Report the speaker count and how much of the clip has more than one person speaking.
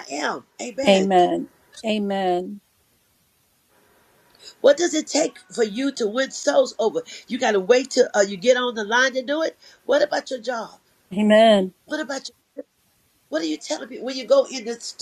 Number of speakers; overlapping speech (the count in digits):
2, about 2%